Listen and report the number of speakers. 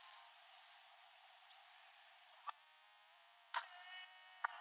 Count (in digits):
0